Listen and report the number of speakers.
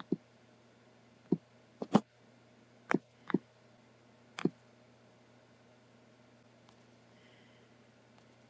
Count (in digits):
0